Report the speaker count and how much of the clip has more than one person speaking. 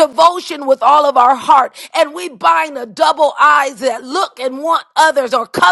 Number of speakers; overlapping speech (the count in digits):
1, no overlap